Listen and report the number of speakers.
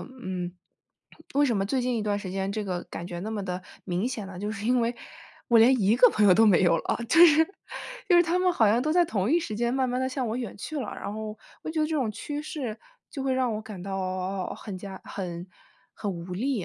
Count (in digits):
1